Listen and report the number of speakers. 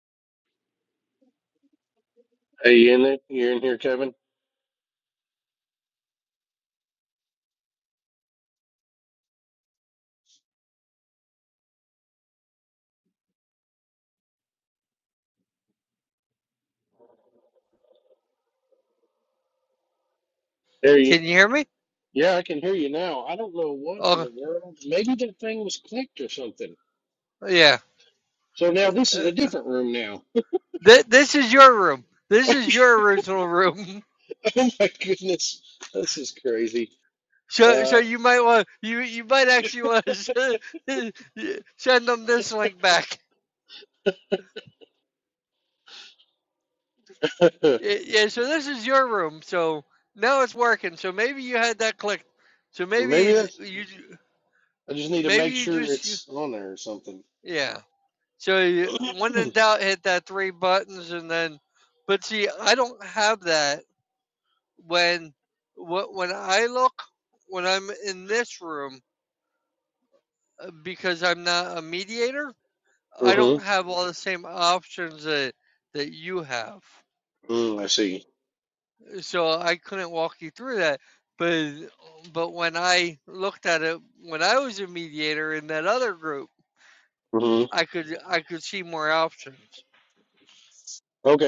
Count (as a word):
two